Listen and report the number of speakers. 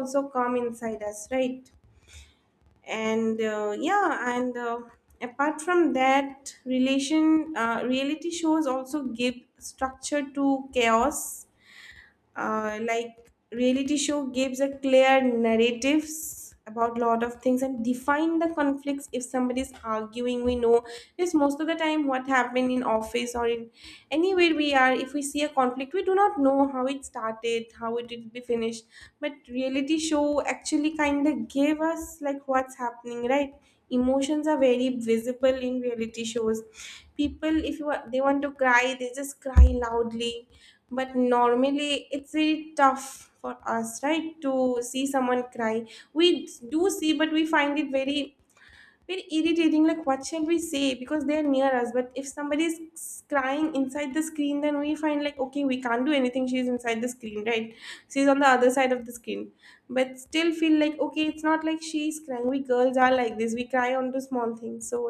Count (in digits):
1